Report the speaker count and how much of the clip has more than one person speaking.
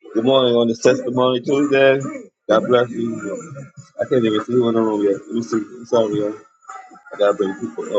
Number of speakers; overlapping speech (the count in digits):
1, no overlap